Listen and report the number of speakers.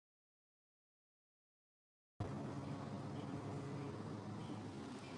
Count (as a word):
zero